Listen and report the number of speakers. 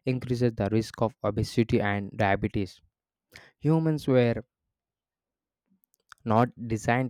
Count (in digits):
1